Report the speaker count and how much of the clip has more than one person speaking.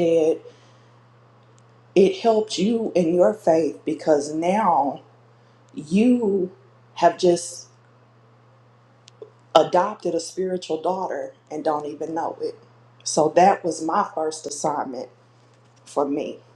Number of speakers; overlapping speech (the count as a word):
one, no overlap